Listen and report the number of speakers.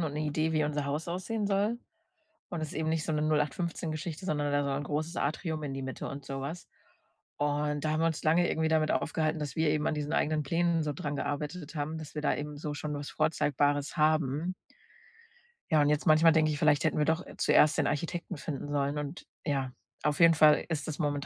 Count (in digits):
1